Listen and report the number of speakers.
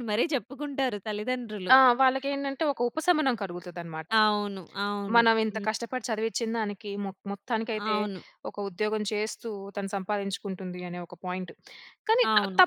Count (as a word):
two